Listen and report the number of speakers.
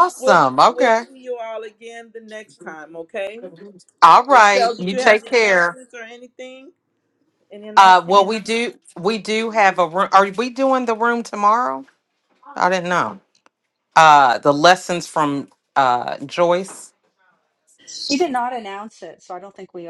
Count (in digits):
3